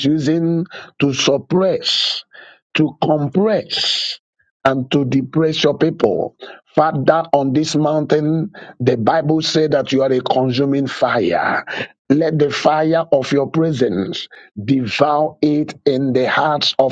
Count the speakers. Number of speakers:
1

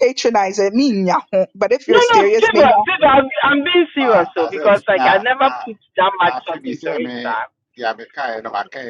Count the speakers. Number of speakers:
3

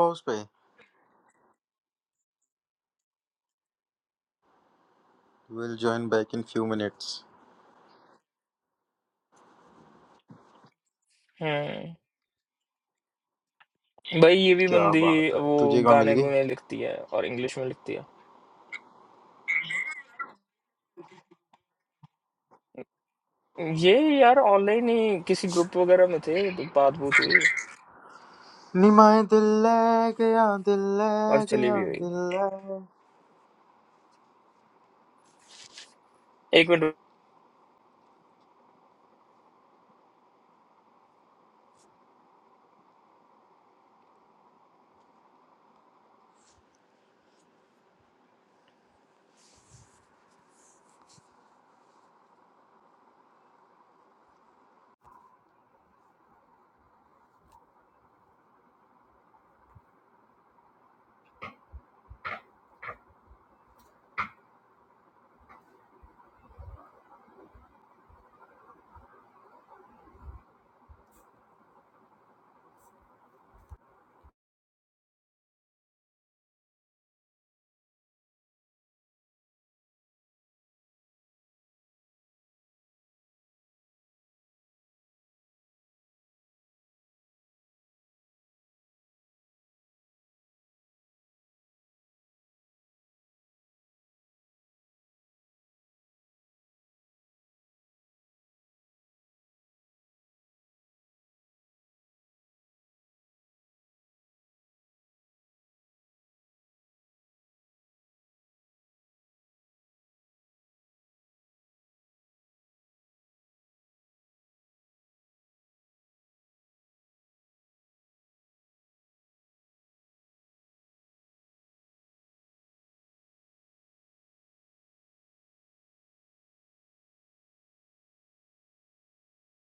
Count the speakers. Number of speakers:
2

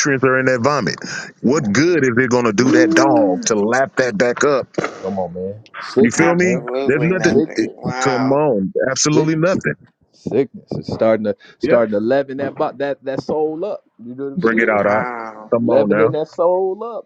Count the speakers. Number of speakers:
3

